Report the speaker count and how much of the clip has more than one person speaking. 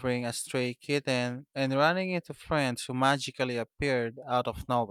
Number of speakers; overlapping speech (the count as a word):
one, no overlap